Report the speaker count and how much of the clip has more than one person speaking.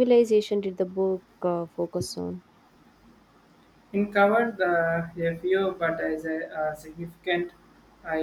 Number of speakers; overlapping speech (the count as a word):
two, no overlap